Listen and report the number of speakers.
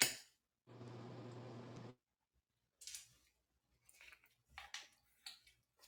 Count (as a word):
zero